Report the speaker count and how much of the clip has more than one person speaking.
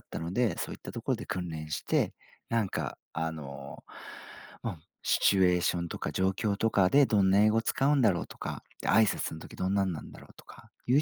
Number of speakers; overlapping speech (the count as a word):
one, no overlap